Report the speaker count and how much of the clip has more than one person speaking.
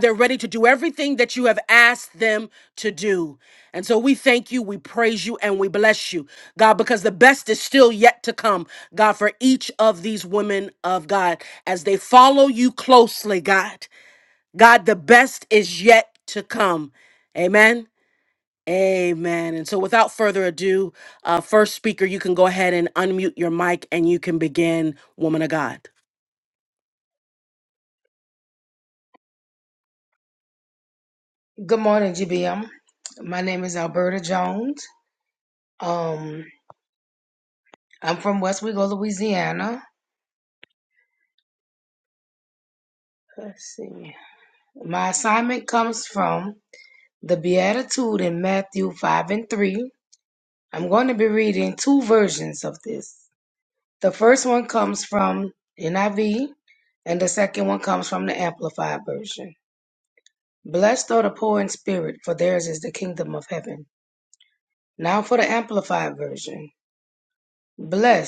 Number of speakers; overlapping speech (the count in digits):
2, no overlap